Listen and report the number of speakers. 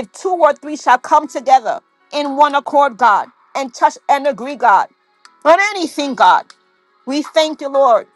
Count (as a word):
one